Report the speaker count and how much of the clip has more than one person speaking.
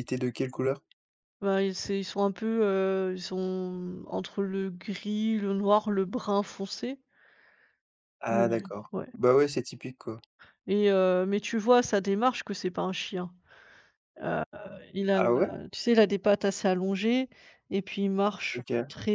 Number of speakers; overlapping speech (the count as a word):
two, about 8%